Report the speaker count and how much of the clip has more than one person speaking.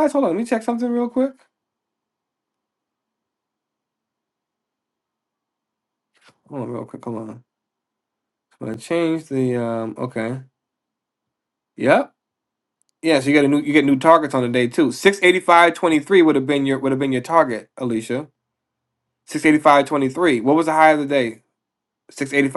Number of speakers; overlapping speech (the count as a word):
one, no overlap